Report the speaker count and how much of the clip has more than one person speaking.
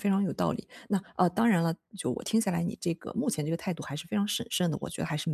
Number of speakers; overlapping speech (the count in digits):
1, no overlap